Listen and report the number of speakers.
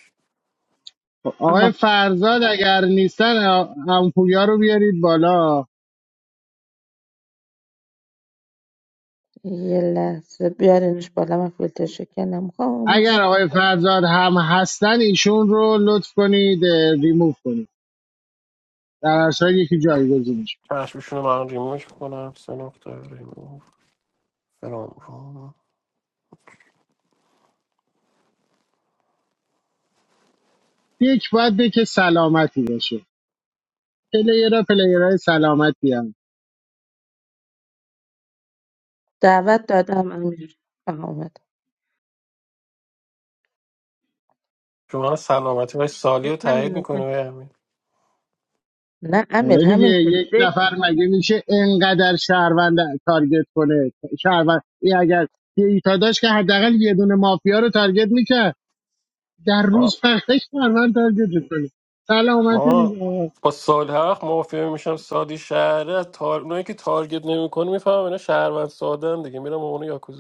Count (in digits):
3